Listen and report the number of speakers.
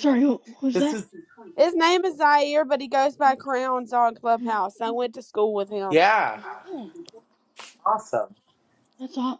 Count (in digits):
3